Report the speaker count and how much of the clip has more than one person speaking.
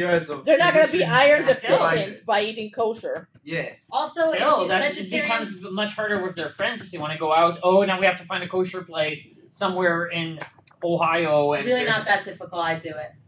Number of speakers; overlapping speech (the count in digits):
4, about 30%